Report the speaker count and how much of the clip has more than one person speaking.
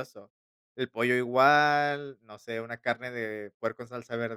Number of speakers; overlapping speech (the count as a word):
one, no overlap